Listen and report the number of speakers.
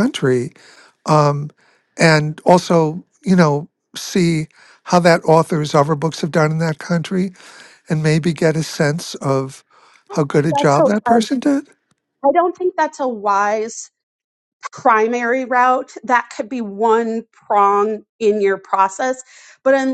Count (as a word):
two